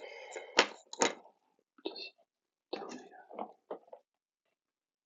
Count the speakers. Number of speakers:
0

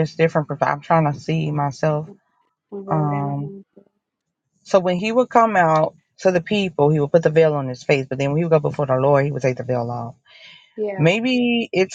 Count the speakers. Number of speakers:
2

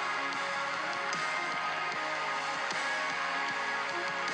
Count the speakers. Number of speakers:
0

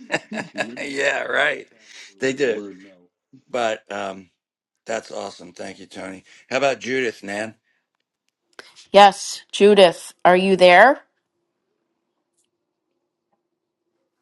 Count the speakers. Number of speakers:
2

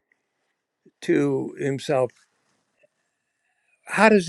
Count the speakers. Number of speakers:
1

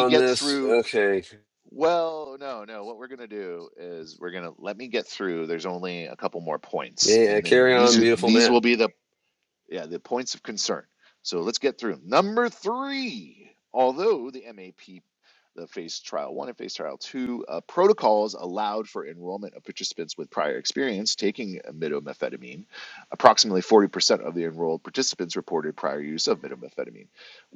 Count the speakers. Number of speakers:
2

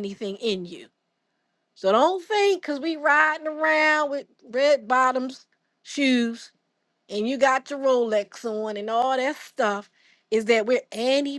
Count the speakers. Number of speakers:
1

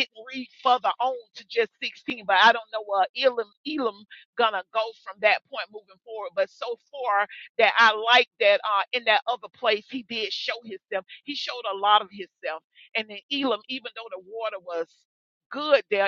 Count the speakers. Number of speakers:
1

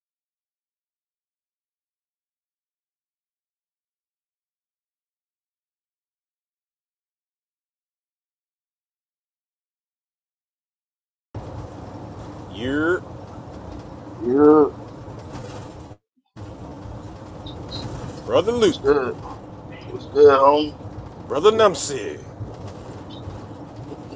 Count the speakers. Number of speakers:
2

